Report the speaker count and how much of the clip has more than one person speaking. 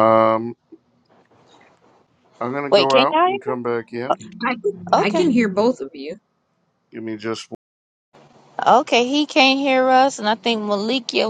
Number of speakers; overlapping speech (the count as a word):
three, about 10%